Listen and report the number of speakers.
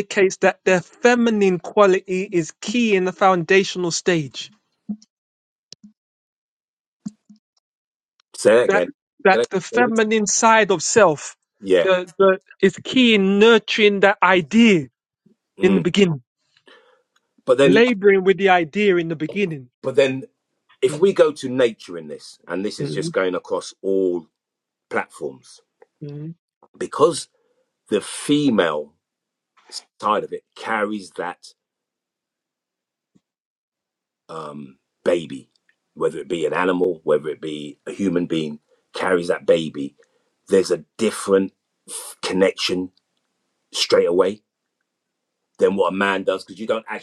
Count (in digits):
2